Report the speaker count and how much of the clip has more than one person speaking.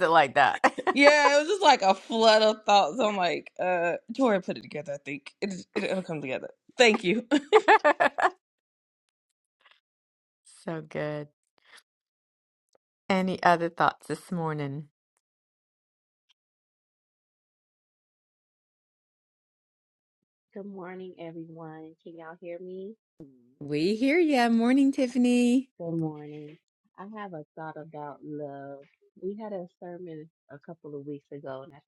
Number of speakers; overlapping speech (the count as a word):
three, no overlap